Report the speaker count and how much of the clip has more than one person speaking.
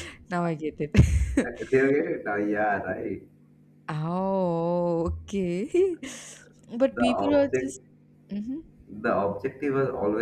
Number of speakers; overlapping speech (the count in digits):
2, about 7%